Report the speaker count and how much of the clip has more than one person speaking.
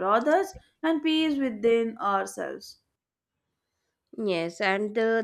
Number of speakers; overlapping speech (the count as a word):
two, no overlap